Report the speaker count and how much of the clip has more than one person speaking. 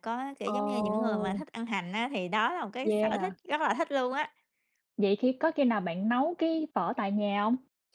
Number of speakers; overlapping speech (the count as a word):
two, about 18%